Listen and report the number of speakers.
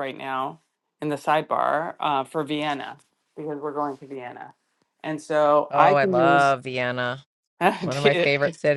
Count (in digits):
2